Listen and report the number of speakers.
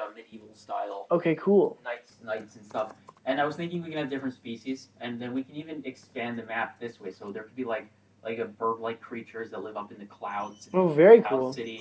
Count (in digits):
2